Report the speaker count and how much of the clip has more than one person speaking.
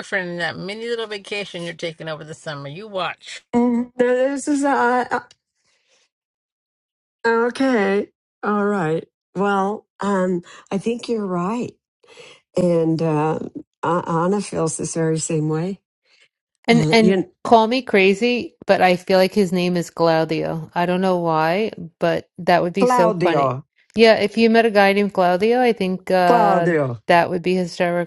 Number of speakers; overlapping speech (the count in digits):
3, about 6%